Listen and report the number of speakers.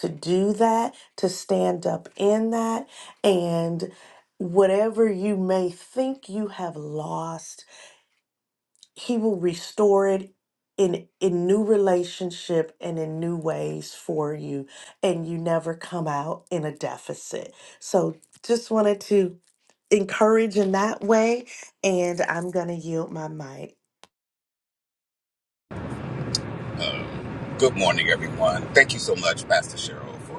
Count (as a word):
two